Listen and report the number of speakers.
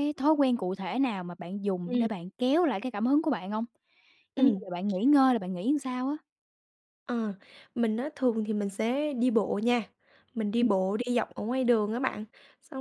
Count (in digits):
2